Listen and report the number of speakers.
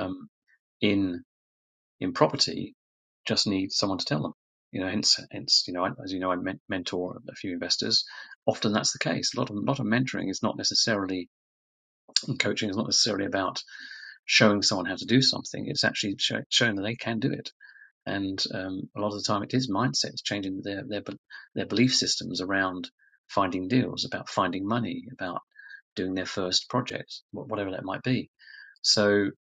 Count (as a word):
one